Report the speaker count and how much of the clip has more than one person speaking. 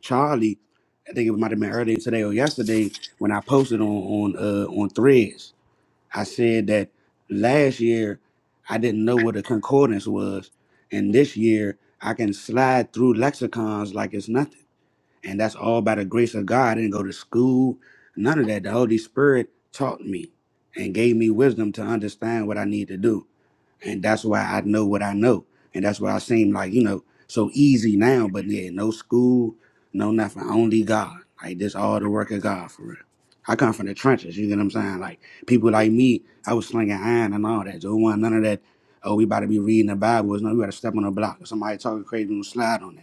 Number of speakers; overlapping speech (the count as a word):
one, no overlap